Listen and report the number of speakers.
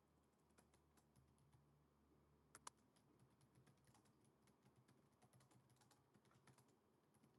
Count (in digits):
0